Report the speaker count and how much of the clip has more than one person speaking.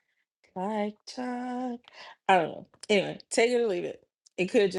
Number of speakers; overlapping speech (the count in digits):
1, no overlap